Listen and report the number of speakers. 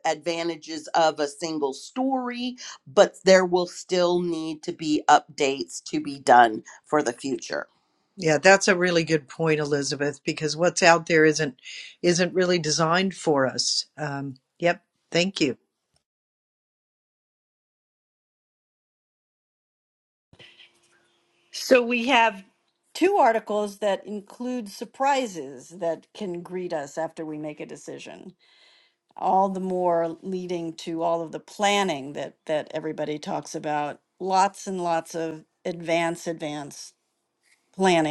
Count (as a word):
three